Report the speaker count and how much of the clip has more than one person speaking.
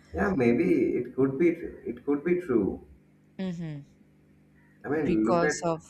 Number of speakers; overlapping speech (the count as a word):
two, about 11%